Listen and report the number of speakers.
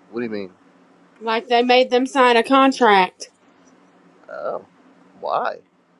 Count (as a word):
two